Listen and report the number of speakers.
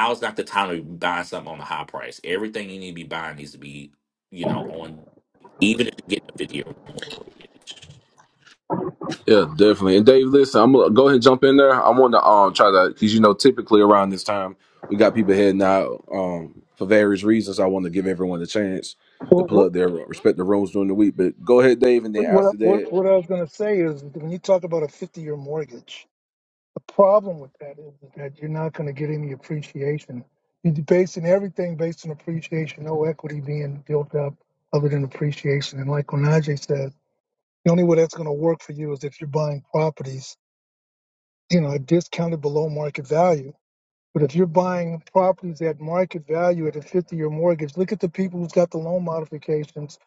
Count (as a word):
three